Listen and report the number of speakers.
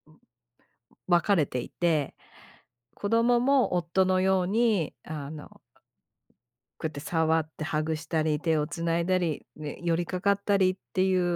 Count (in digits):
1